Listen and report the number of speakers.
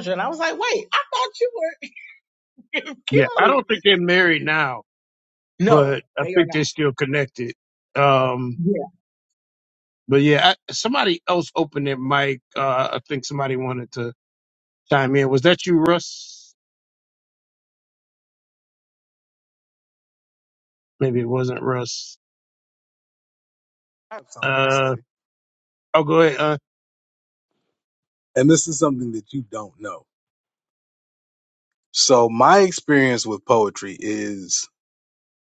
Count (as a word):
three